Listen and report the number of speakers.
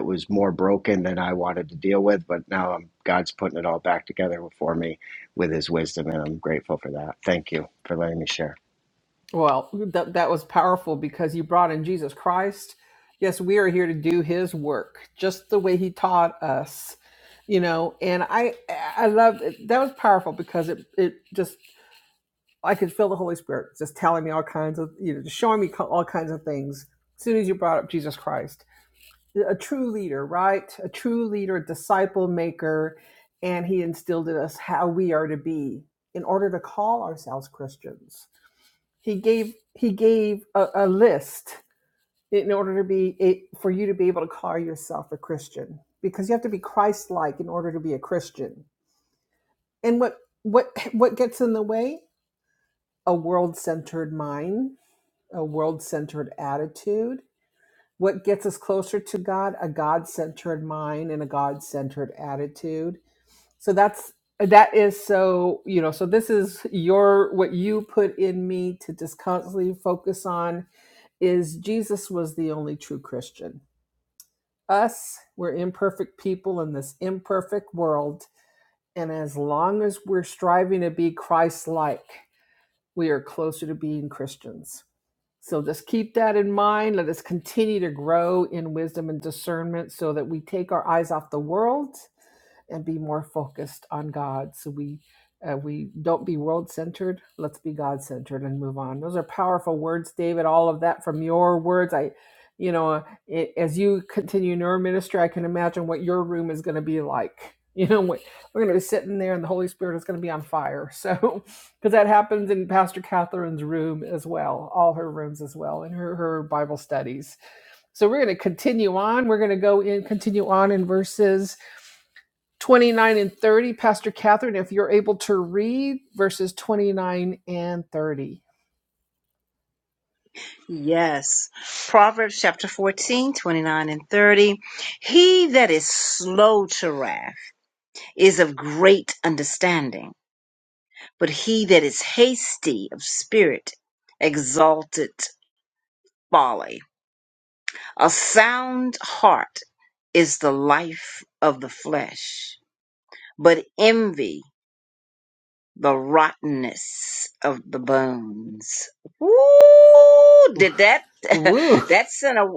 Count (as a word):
three